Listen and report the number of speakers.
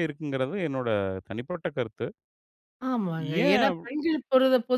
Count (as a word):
two